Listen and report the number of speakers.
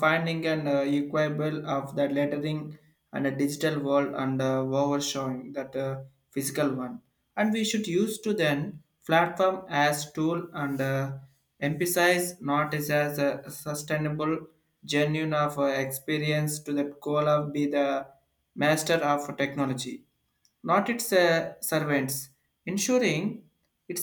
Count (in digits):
1